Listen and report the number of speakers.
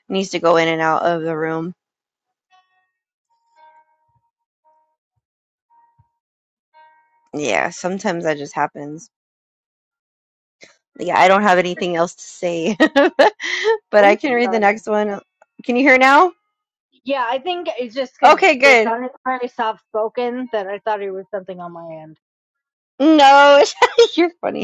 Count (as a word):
two